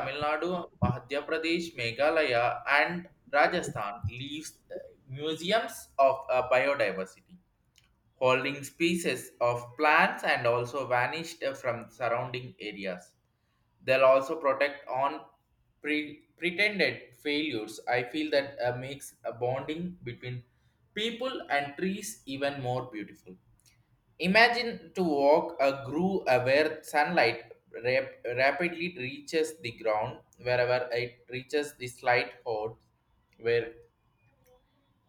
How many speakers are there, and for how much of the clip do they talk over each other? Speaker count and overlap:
one, no overlap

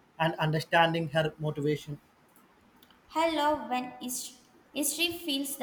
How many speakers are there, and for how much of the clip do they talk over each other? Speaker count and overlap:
two, no overlap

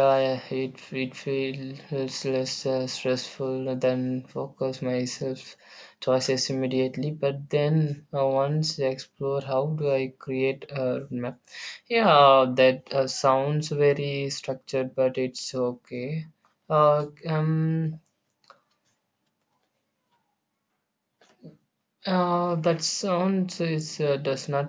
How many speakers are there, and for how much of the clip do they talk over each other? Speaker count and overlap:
one, no overlap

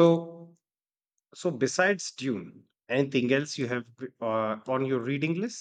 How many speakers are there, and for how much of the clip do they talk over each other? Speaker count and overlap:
one, no overlap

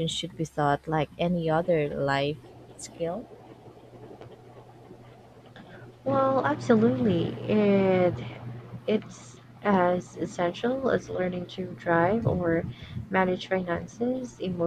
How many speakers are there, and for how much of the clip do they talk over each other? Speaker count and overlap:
two, no overlap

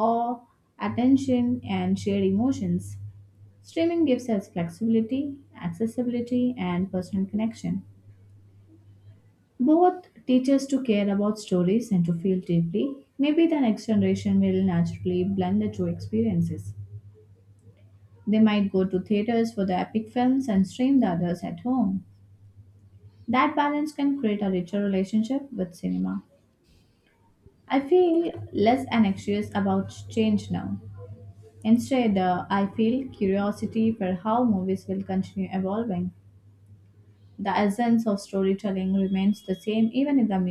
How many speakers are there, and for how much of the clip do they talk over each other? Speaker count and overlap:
one, no overlap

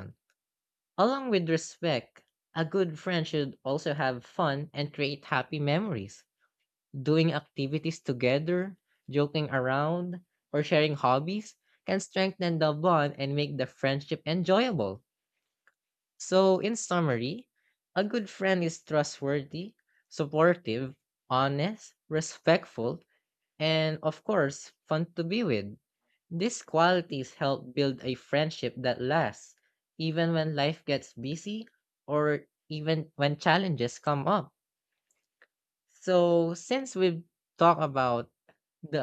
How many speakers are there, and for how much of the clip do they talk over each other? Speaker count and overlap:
one, no overlap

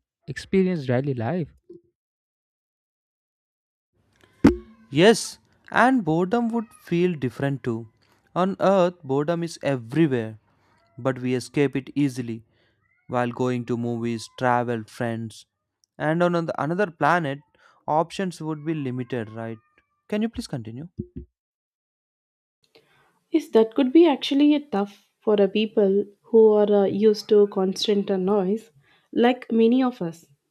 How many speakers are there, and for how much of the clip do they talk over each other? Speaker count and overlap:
three, no overlap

